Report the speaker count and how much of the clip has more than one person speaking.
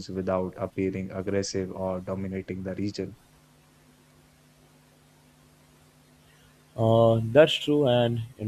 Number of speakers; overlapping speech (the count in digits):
2, no overlap